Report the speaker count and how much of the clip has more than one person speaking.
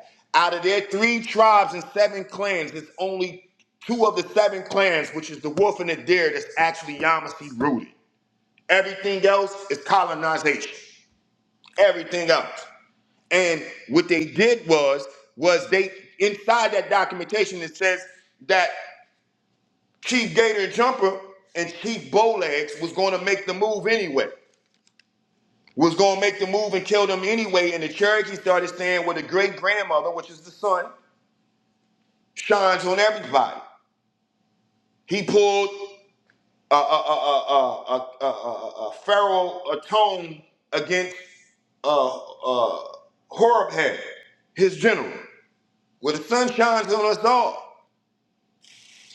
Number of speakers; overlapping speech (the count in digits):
1, no overlap